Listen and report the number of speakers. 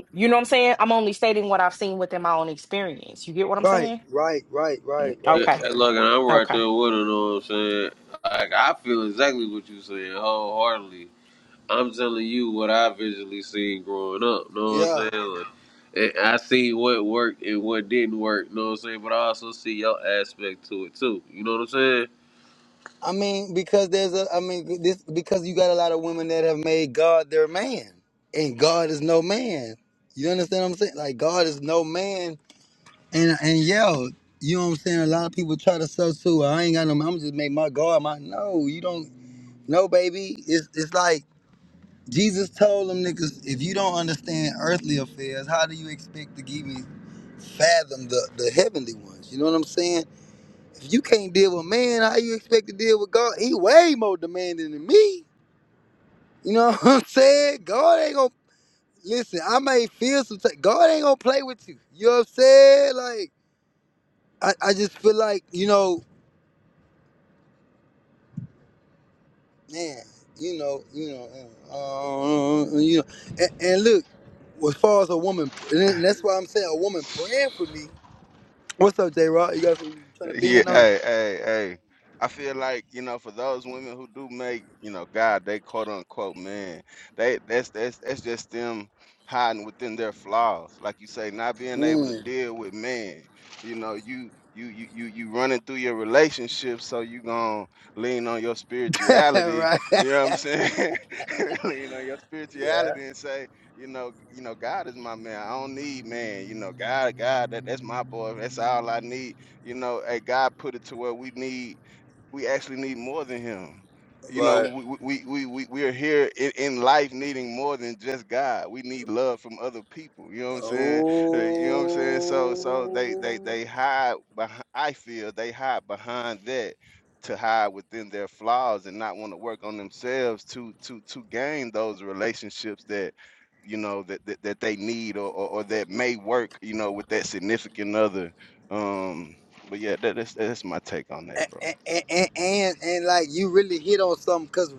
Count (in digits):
4